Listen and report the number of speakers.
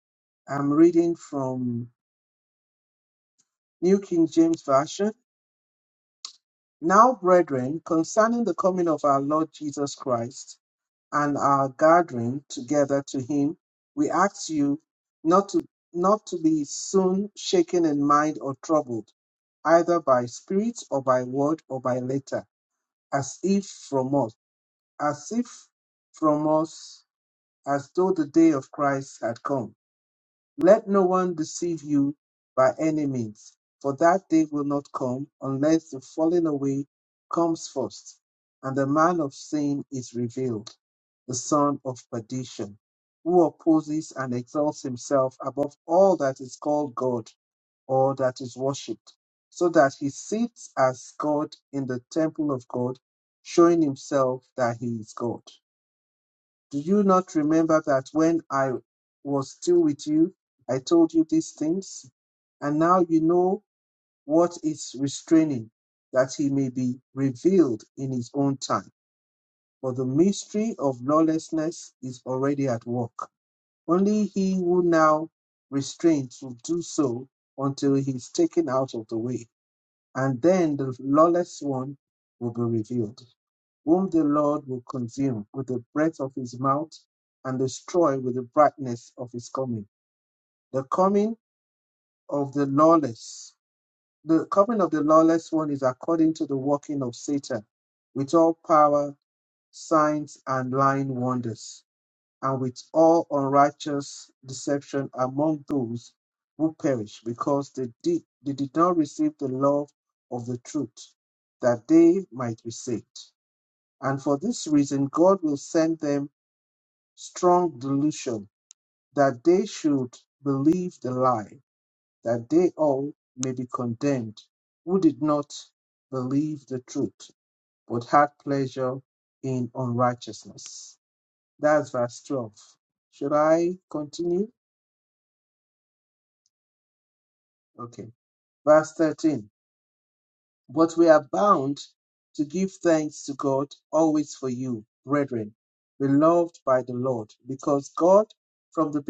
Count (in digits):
1